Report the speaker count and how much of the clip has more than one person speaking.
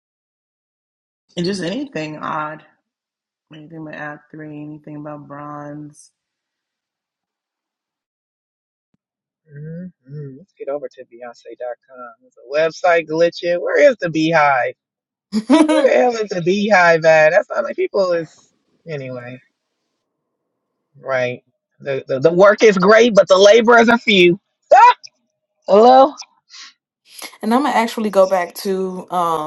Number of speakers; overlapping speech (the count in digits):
3, about 1%